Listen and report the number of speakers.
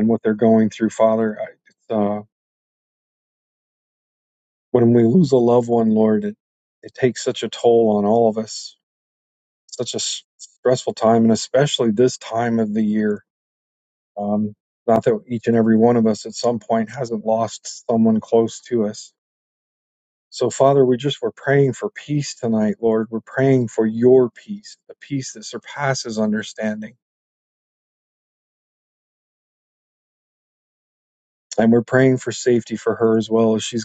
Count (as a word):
one